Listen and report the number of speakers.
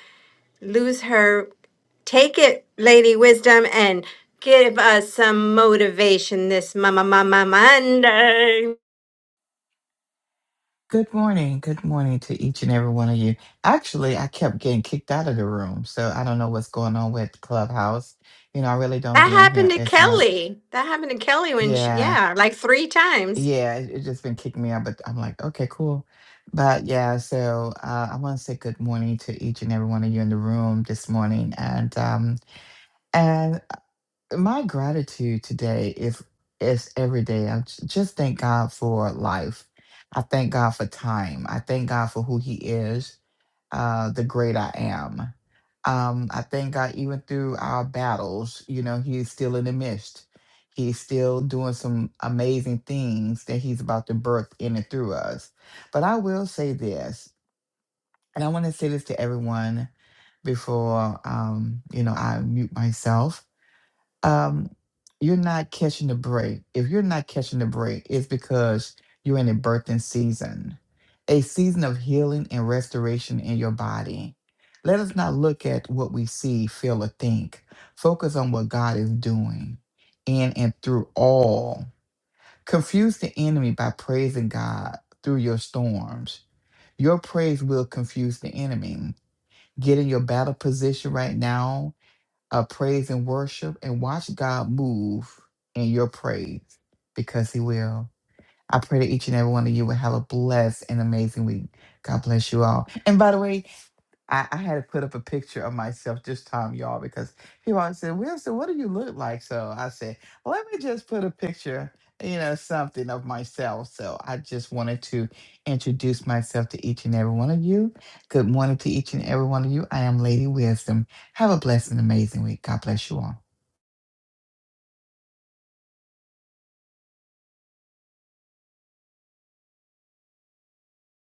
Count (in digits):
2